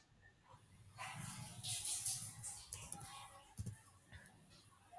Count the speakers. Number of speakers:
0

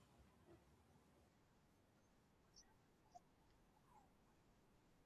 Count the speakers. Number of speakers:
0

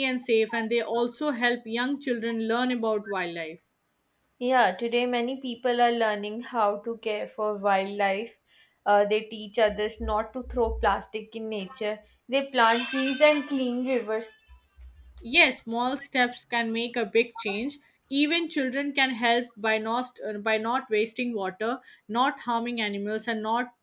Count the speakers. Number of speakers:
2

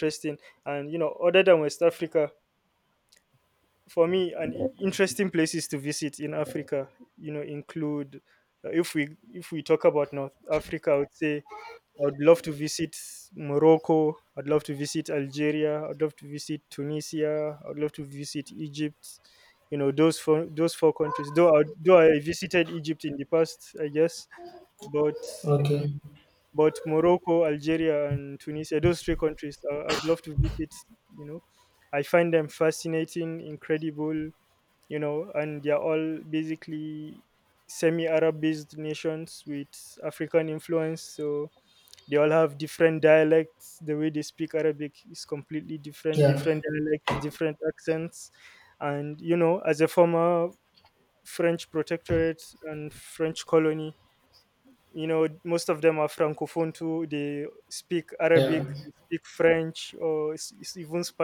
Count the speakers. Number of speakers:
2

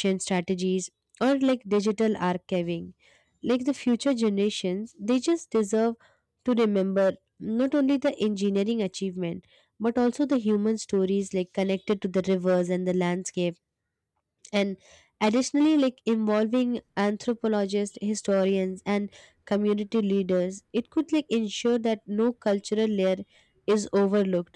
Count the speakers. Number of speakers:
1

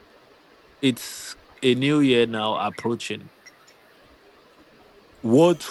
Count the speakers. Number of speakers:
1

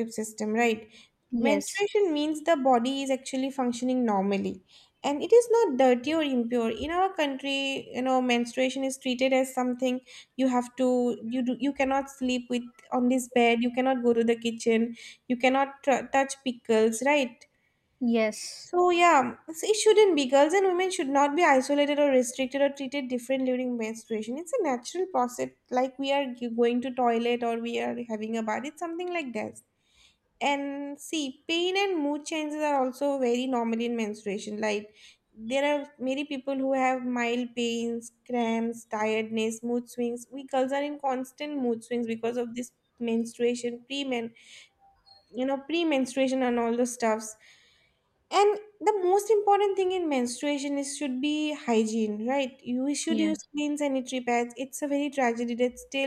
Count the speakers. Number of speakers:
2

